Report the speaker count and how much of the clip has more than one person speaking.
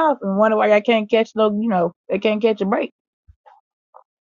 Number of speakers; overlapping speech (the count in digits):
1, no overlap